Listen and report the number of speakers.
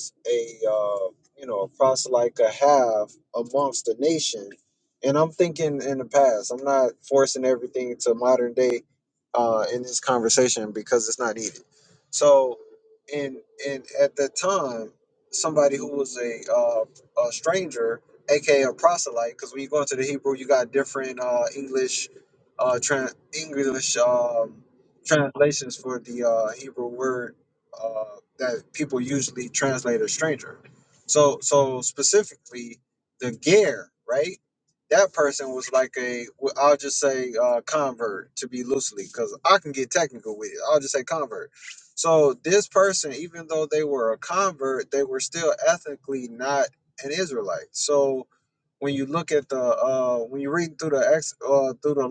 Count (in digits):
1